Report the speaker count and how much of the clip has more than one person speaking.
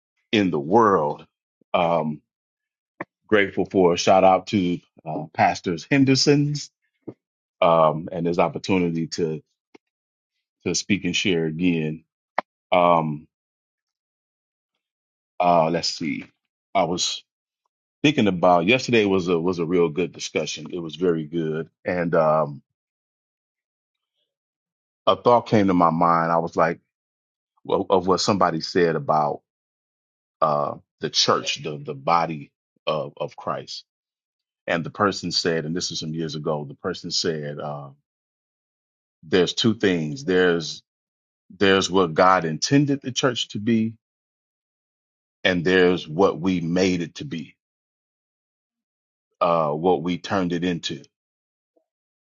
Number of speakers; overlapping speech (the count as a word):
one, no overlap